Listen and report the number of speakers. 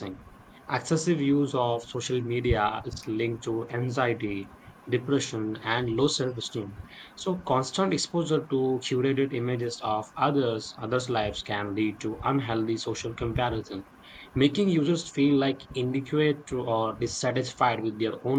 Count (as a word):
one